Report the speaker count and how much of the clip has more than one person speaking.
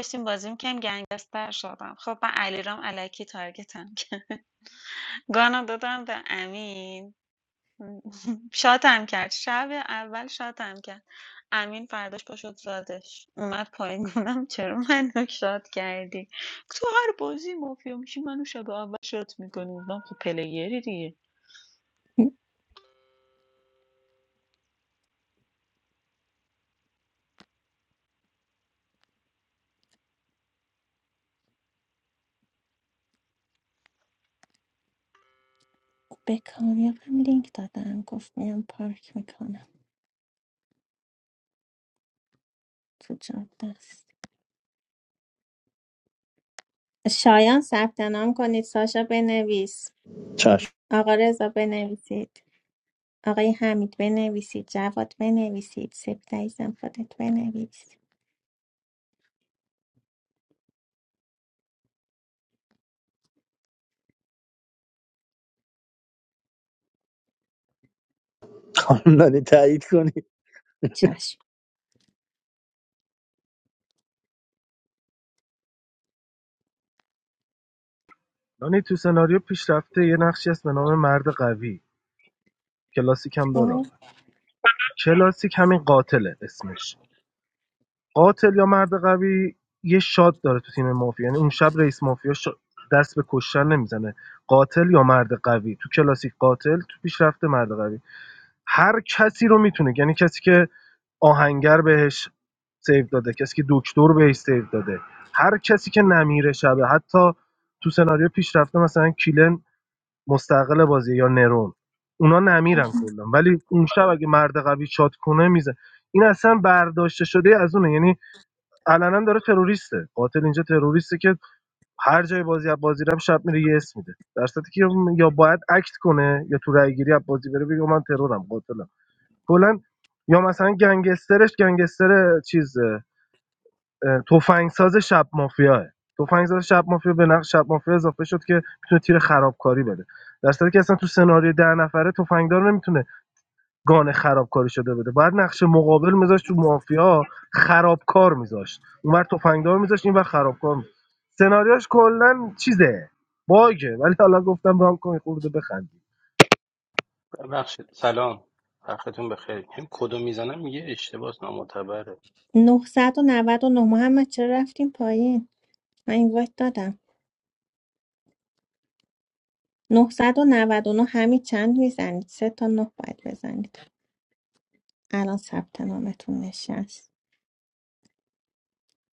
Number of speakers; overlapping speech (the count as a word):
five, under 1%